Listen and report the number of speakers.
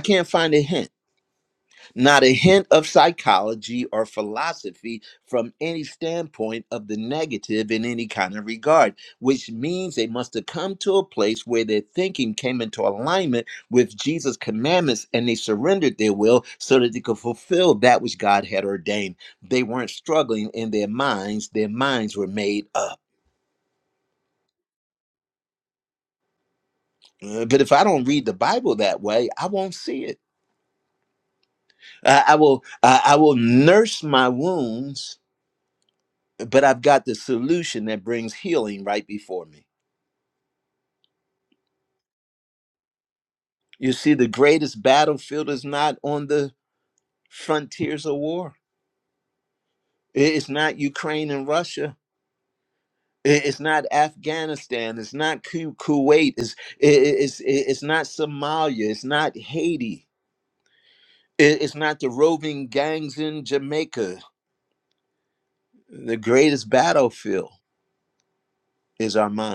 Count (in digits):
1